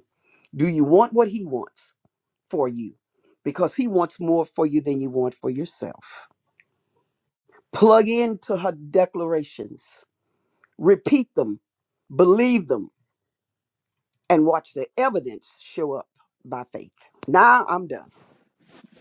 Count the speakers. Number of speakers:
1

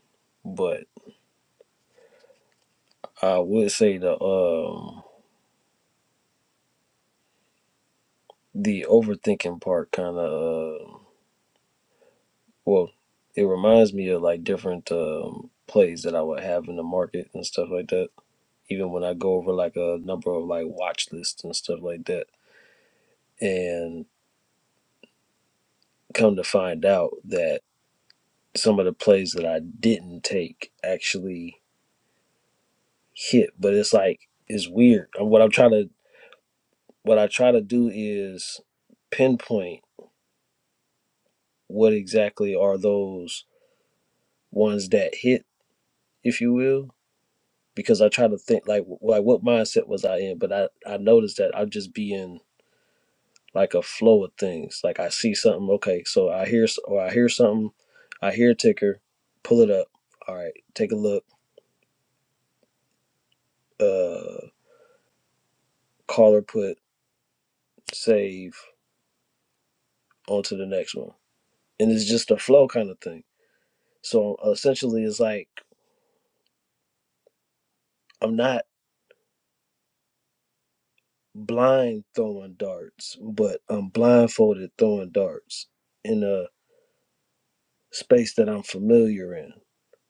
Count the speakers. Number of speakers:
1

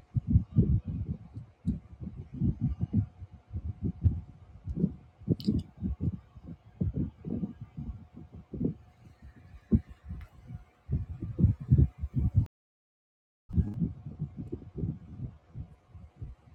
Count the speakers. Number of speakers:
0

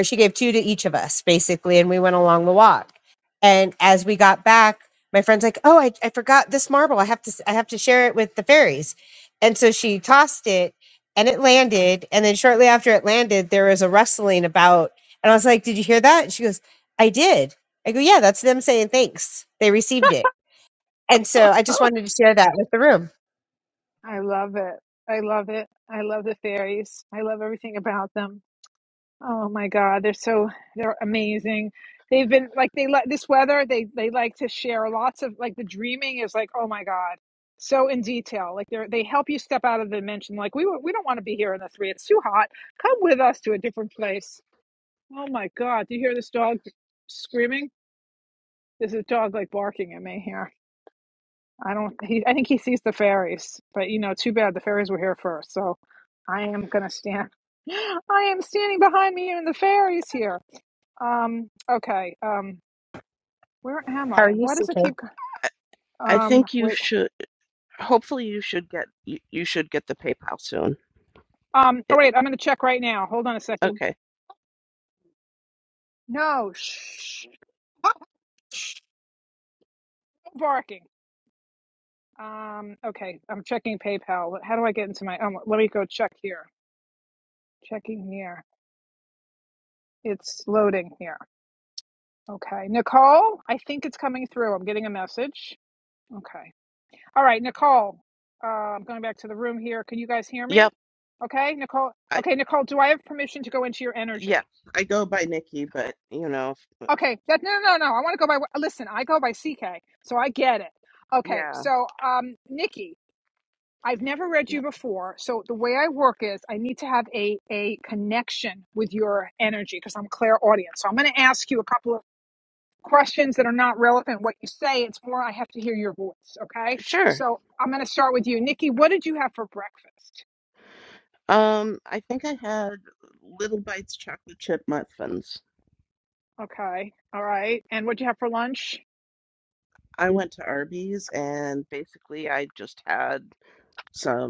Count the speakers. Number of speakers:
3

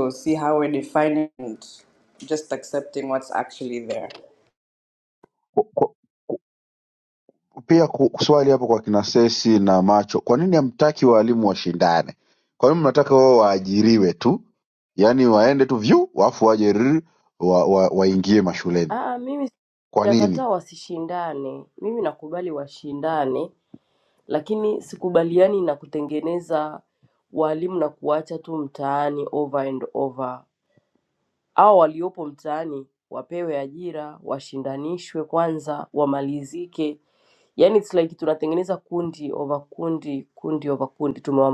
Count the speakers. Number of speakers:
3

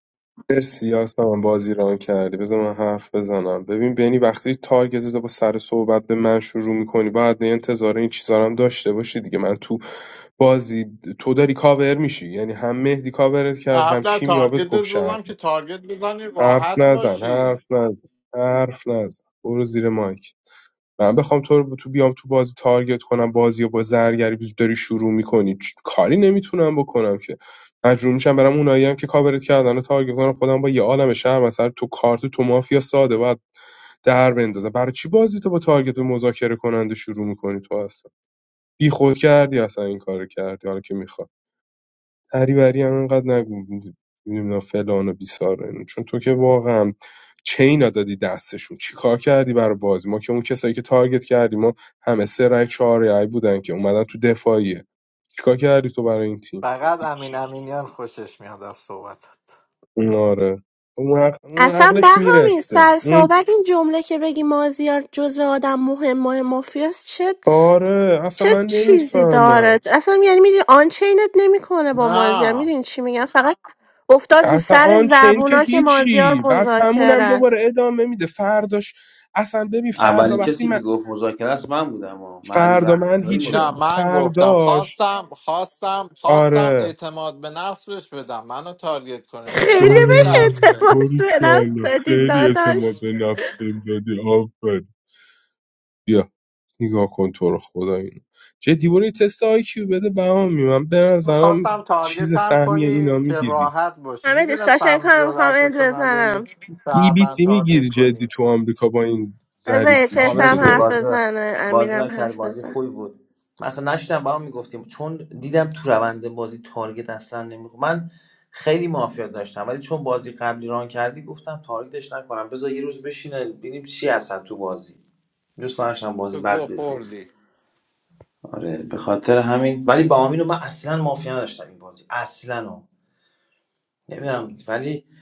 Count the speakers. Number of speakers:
4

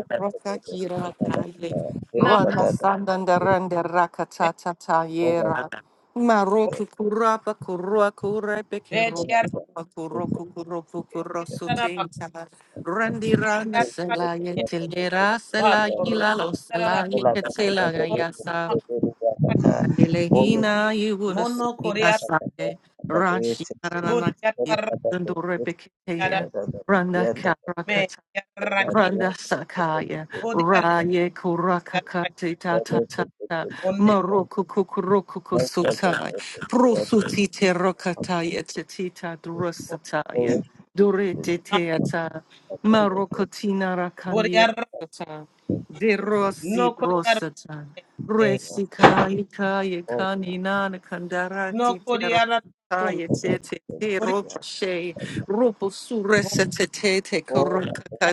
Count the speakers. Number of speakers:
3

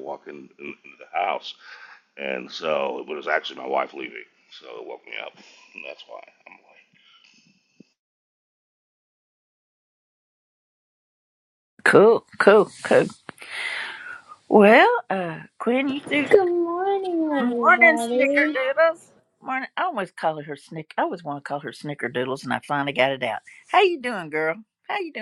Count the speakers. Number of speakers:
3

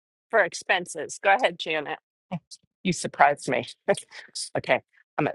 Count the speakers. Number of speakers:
2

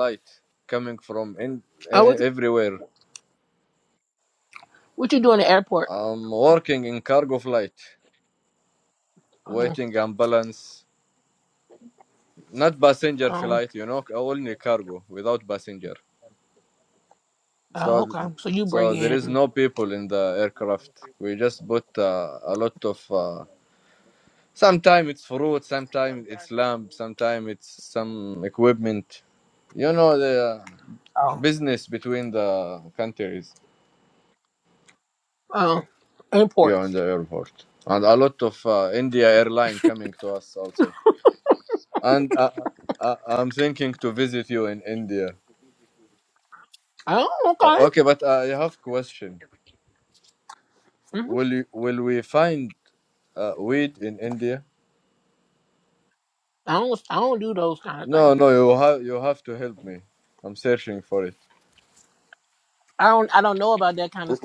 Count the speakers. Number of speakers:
2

